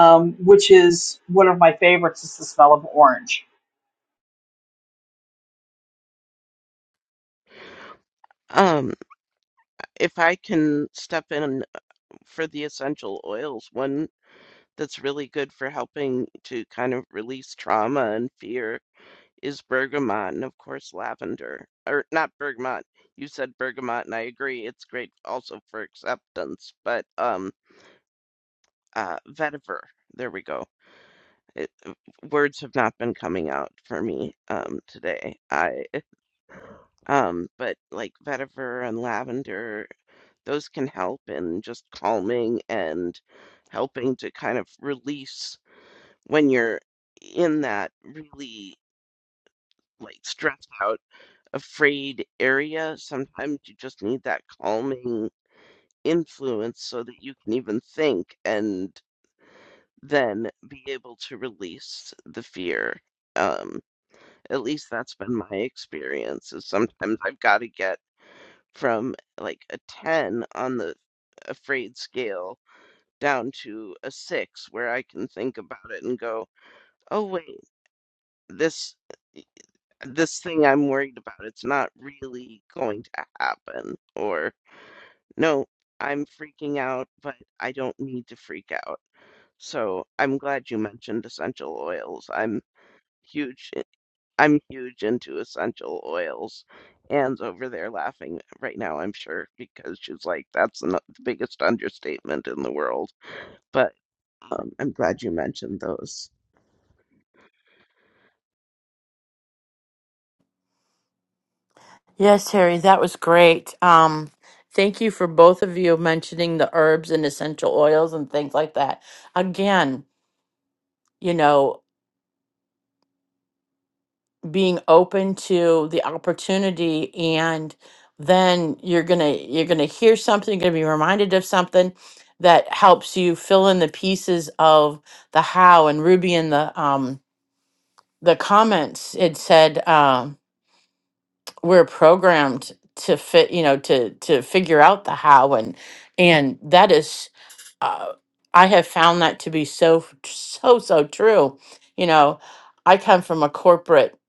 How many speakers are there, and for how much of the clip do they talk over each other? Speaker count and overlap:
three, no overlap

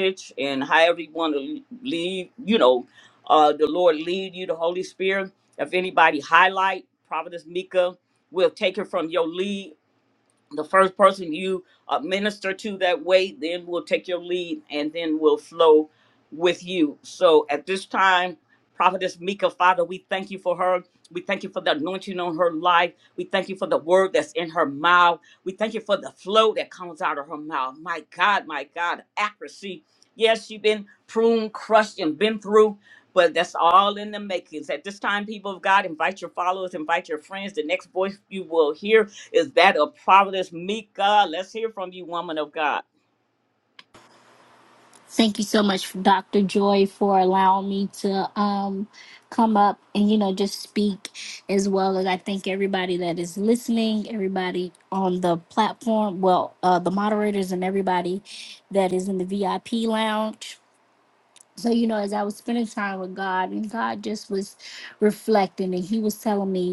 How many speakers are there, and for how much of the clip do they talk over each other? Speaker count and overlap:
two, no overlap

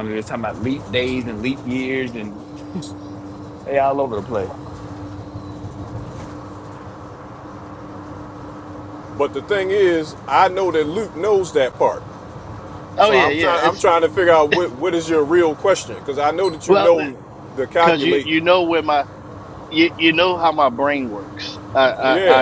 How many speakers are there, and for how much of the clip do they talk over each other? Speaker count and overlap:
three, about 9%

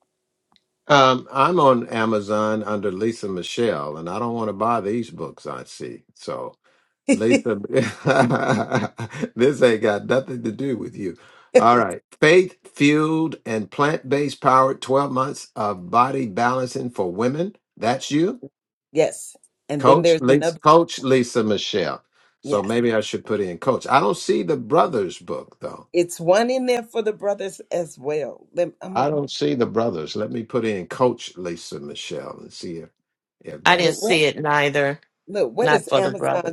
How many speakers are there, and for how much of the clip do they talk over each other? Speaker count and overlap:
three, about 8%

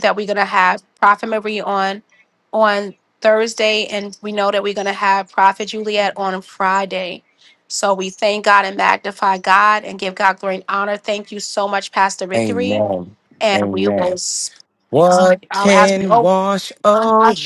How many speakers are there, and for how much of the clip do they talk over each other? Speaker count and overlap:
two, about 12%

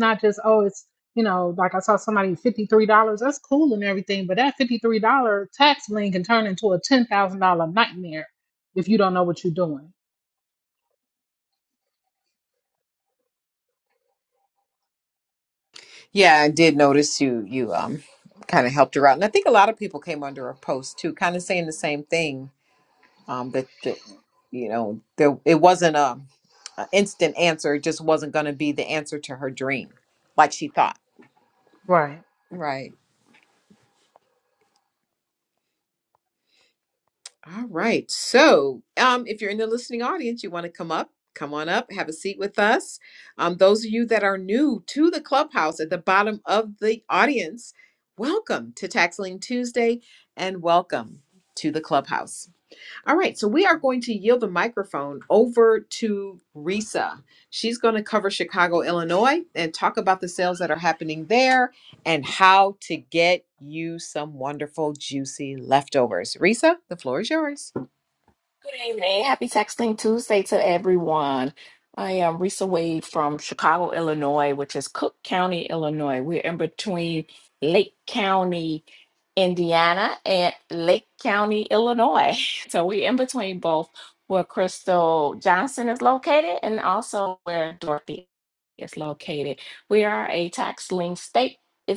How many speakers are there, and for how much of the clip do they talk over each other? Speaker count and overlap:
three, no overlap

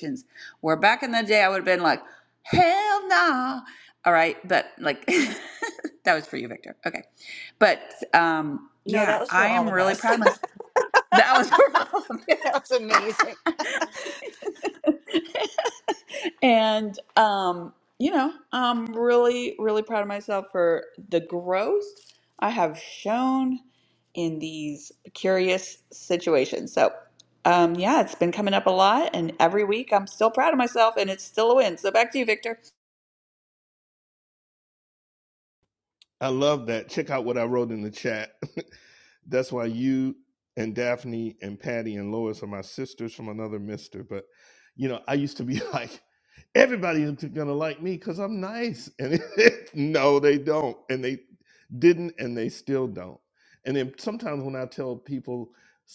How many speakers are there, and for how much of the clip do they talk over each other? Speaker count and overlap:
three, about 2%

